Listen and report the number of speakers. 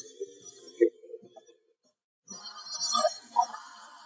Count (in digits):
0